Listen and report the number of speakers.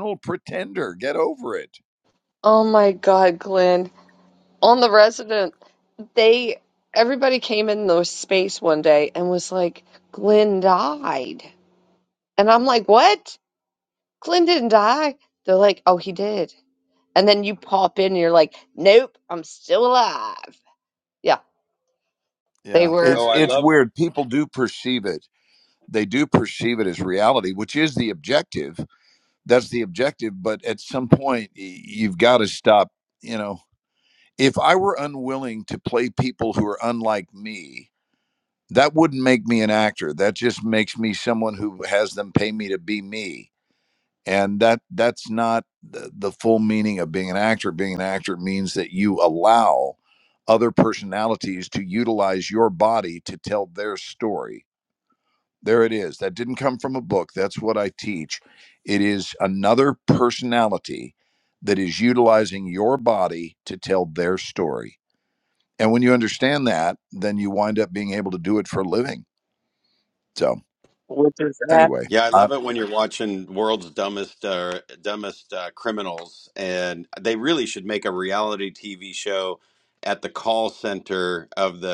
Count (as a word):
three